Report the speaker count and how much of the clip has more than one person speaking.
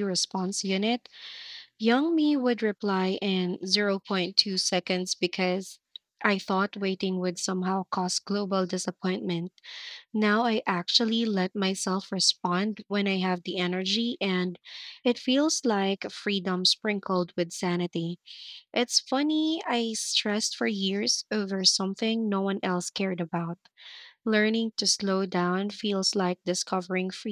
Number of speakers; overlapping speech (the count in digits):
1, no overlap